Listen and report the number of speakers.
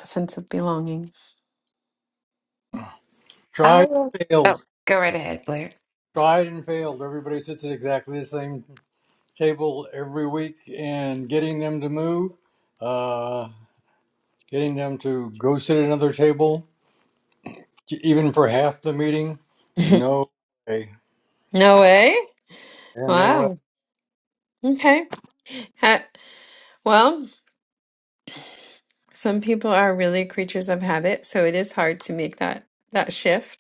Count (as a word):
three